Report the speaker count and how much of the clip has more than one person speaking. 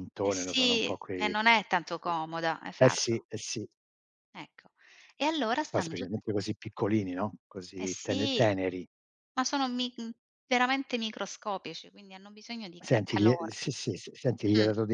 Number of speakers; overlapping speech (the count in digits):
2, about 23%